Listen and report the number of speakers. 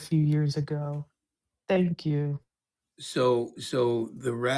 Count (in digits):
2